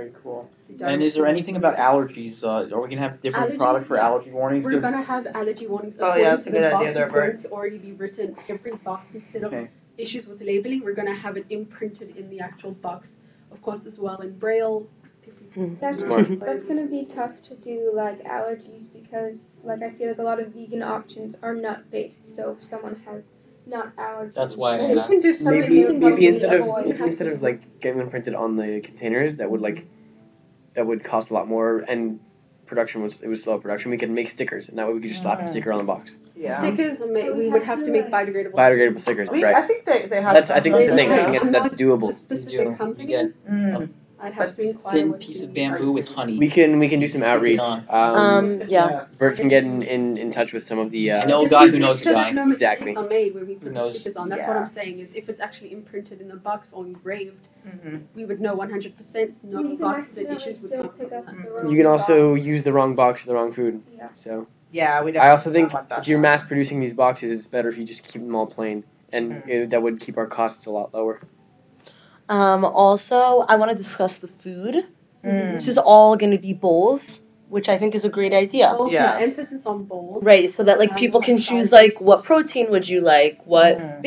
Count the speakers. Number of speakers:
6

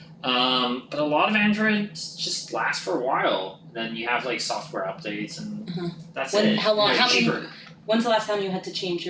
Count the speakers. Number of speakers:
2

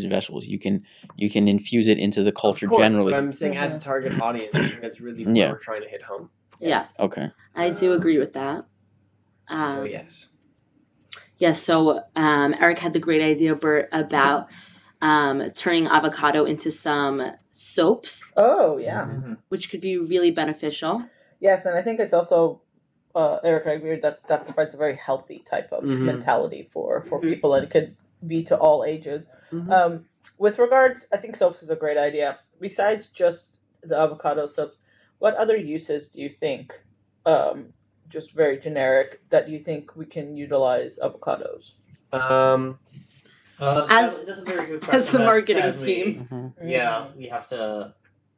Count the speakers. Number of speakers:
5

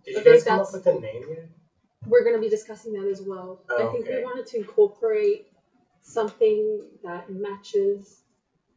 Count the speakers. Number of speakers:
2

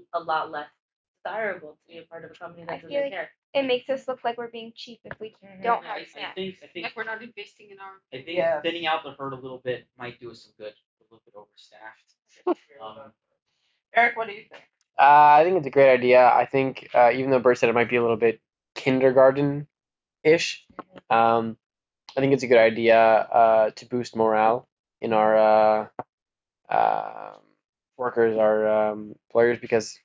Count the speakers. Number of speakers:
6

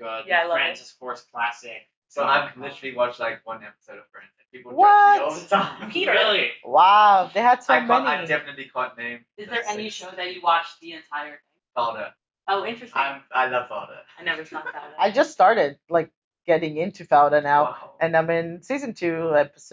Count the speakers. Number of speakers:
4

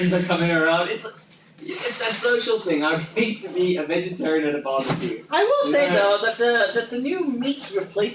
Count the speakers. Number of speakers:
2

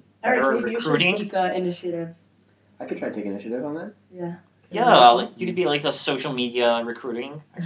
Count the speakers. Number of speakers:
3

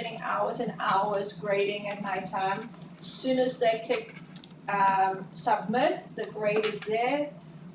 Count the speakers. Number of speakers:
1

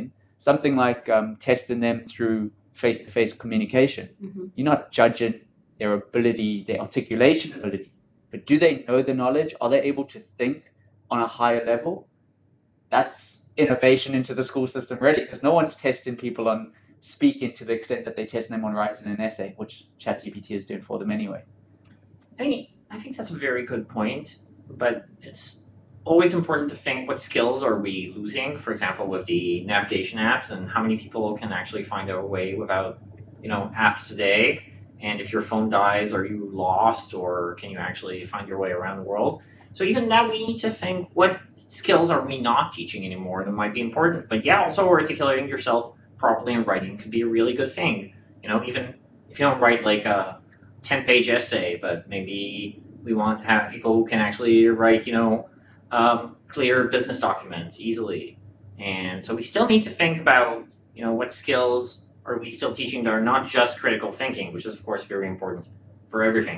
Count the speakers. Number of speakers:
2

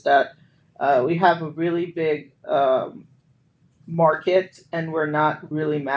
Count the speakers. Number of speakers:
1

